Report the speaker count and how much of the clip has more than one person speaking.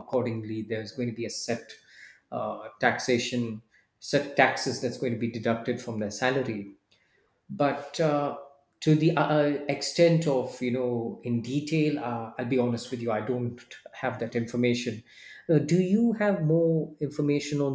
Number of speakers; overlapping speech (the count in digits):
1, no overlap